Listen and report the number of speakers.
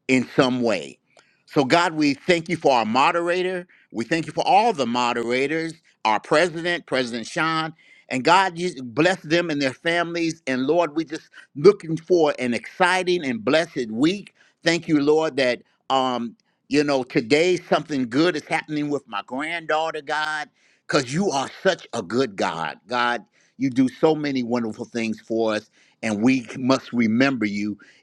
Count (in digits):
1